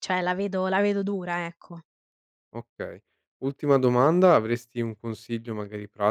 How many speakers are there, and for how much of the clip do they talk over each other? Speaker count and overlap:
2, no overlap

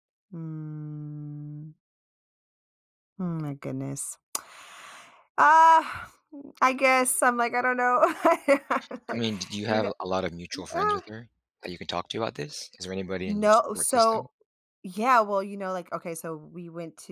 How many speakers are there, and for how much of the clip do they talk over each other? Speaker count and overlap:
2, about 9%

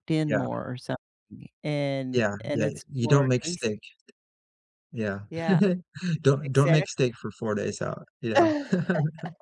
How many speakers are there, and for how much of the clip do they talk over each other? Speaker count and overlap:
2, about 22%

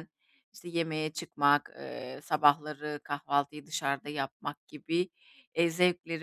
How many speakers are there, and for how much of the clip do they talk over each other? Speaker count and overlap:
1, no overlap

